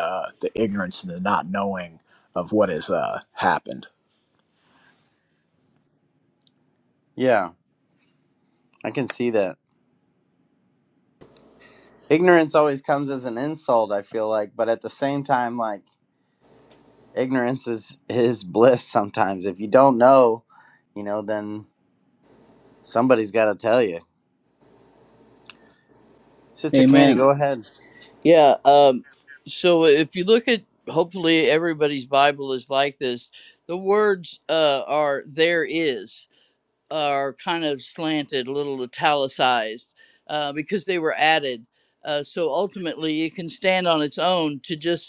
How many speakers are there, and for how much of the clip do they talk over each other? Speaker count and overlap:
3, about 1%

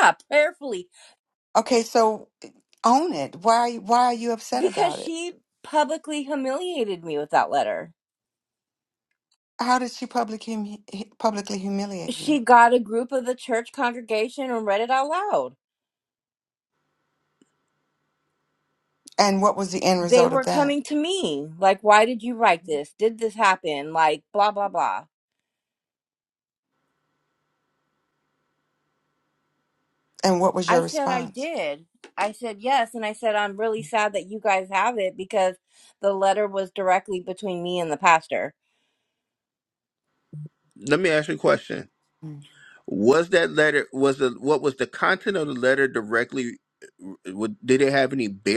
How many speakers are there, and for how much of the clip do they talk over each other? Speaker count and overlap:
3, about 4%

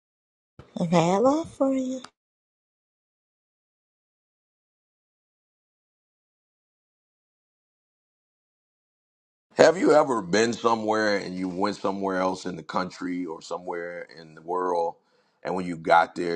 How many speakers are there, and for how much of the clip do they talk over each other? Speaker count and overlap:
2, no overlap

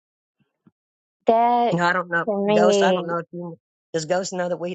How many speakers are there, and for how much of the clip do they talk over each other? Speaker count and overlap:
2, about 19%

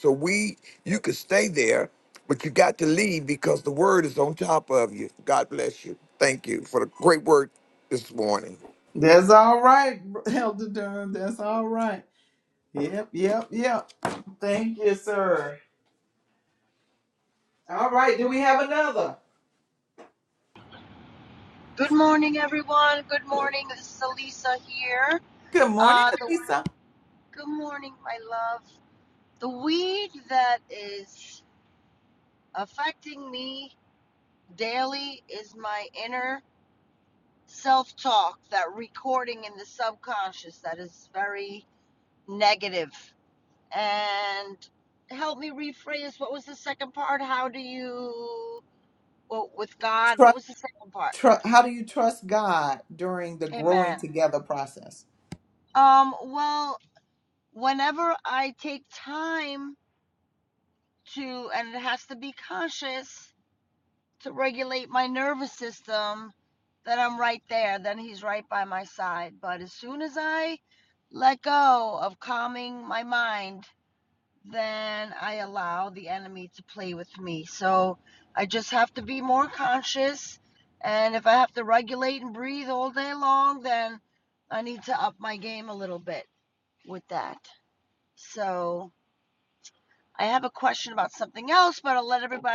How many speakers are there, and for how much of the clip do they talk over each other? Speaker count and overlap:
3, about 1%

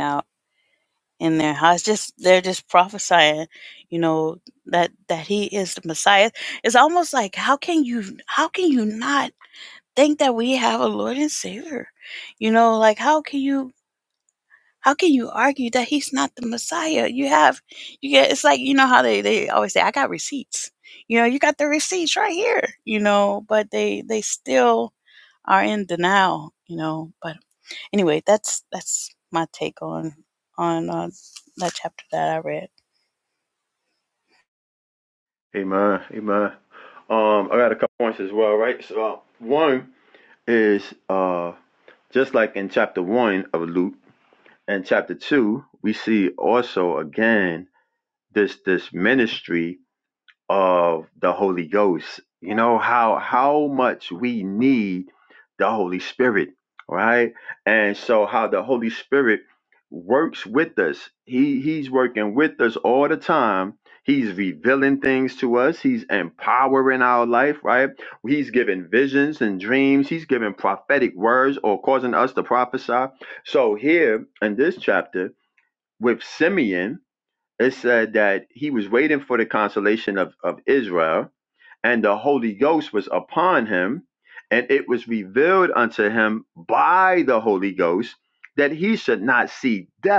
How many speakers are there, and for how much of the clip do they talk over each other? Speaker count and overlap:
2, no overlap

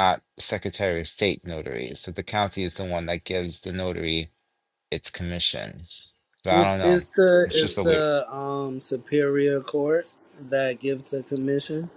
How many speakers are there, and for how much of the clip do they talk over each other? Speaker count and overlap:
2, about 9%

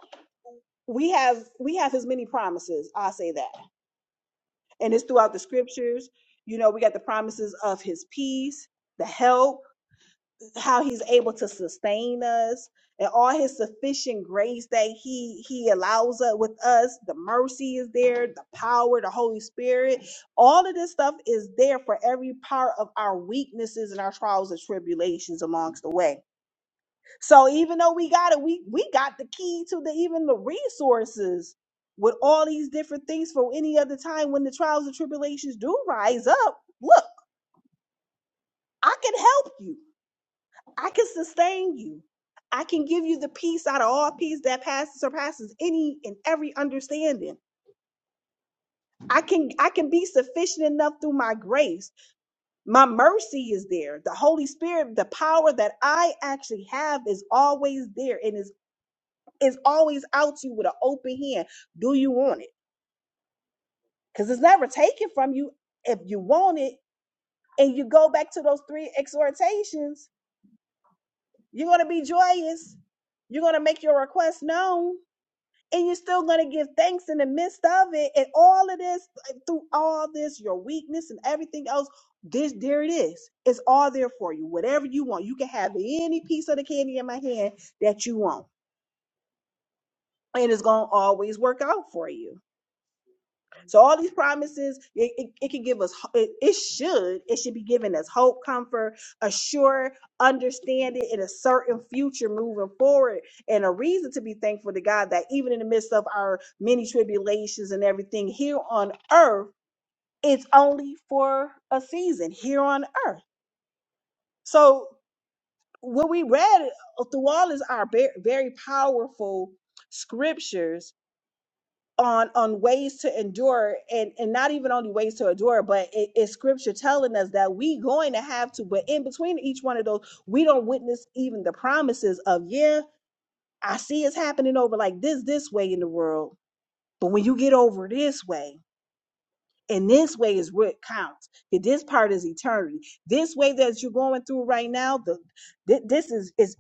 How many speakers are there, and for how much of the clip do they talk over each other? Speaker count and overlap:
1, no overlap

